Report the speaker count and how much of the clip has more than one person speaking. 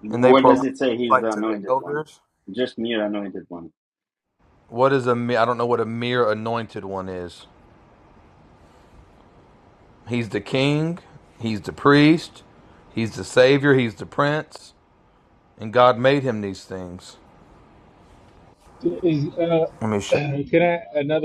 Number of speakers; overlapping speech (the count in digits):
3, about 7%